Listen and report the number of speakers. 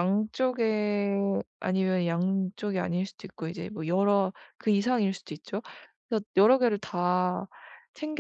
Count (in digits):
1